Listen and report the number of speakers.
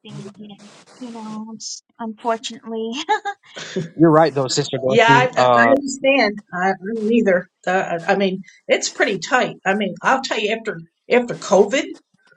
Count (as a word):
three